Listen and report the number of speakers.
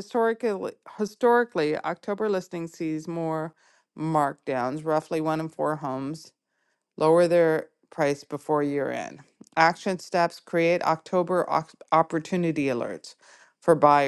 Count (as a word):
one